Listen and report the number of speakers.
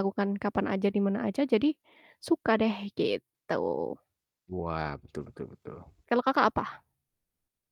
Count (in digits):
2